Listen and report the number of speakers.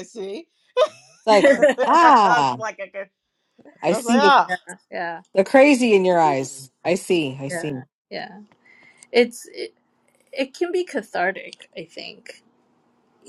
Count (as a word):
three